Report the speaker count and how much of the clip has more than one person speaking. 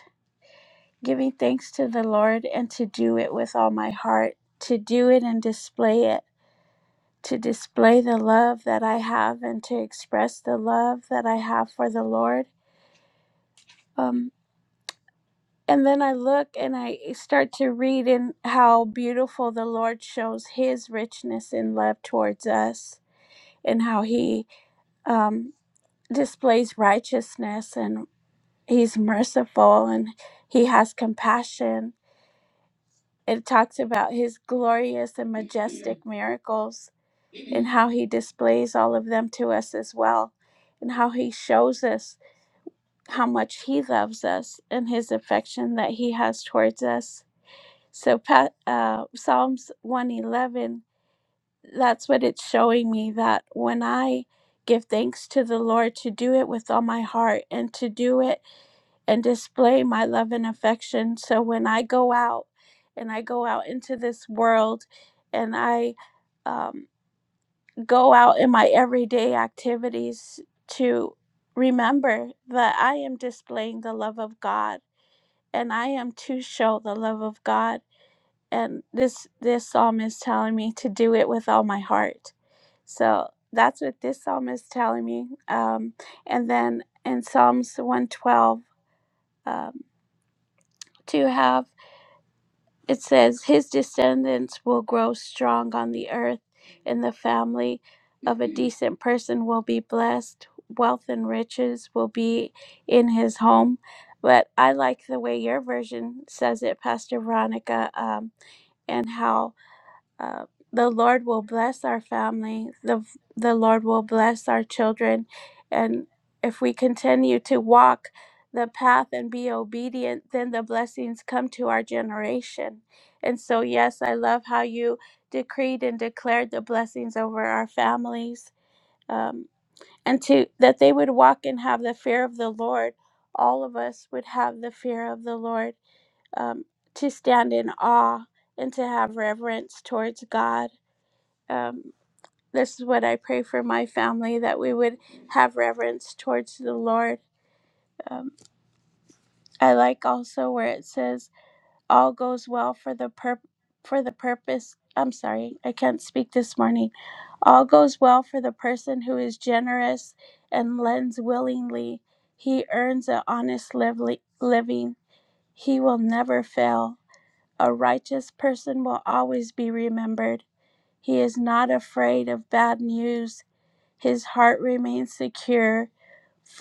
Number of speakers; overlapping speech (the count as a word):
one, no overlap